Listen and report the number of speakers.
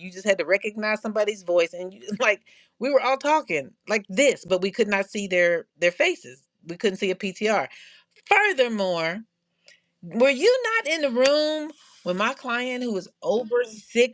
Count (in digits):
1